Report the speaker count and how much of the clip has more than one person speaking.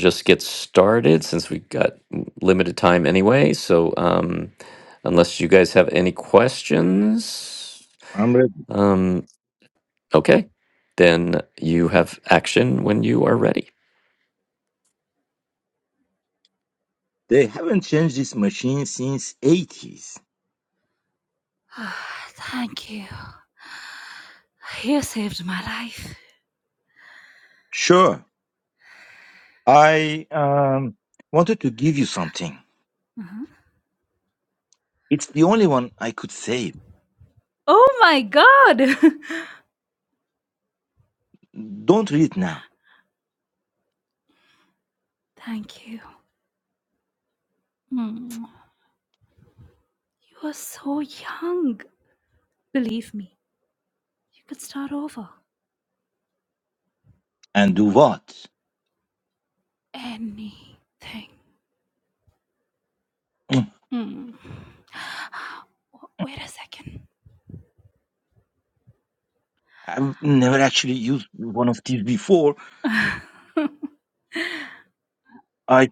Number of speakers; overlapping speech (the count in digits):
3, no overlap